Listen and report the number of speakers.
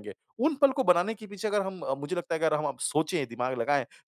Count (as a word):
one